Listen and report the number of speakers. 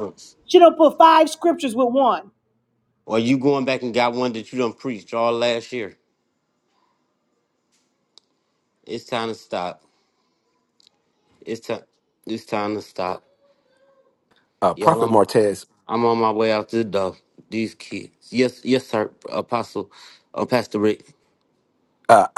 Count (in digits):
3